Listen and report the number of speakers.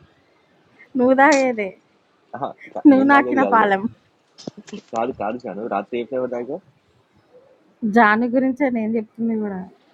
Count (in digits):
2